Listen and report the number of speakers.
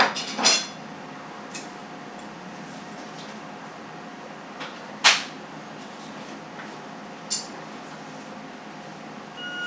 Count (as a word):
zero